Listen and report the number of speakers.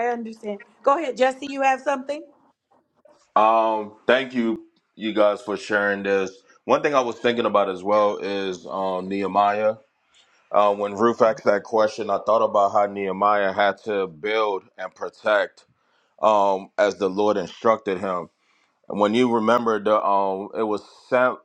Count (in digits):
2